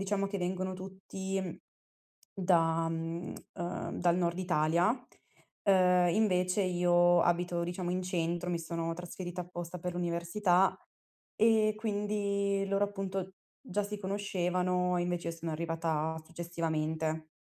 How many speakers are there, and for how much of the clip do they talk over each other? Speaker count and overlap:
one, no overlap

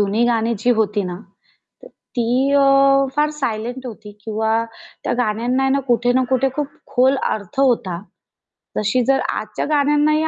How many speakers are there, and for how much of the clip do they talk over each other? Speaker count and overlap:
one, no overlap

